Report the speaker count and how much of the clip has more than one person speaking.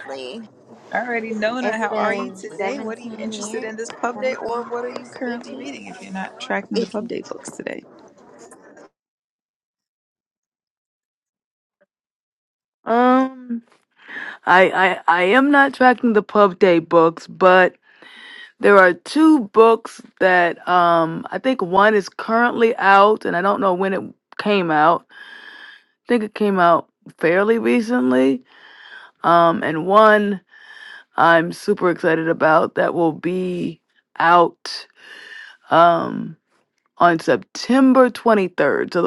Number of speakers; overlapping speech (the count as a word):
three, about 10%